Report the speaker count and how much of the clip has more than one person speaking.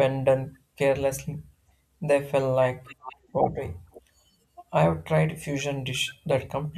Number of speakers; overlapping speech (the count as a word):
one, no overlap